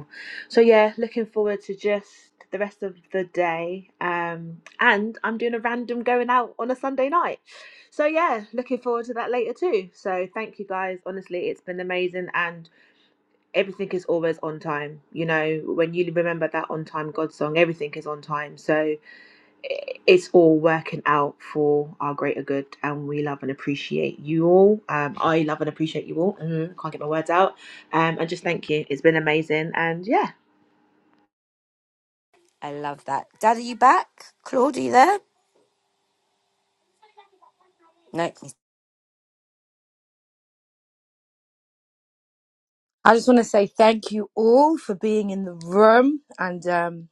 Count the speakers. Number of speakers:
3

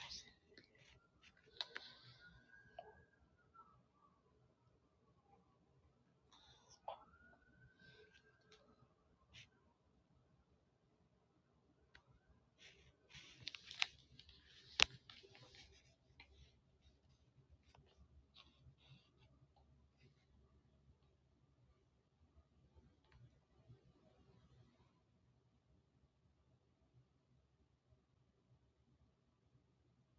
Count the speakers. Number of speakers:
0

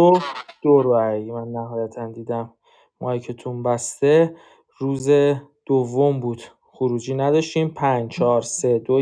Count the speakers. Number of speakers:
1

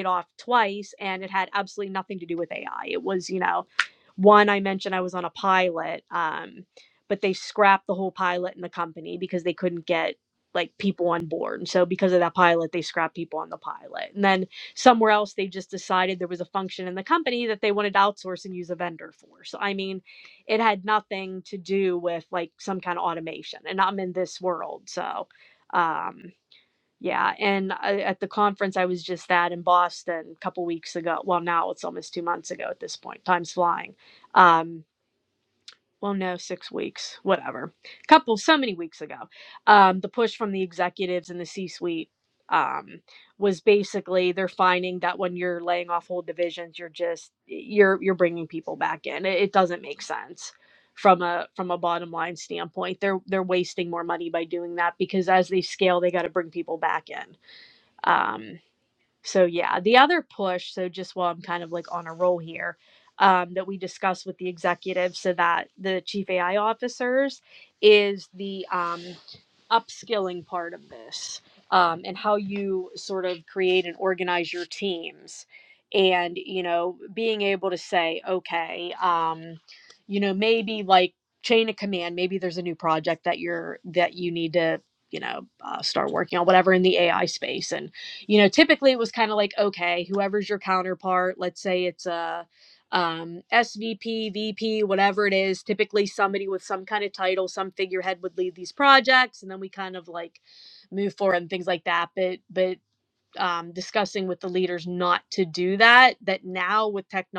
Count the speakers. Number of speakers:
1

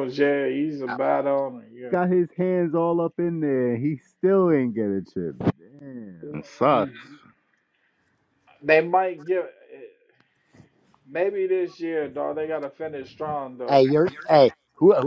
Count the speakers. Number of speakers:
3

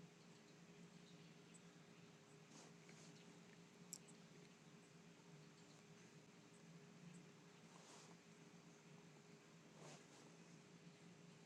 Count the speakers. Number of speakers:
0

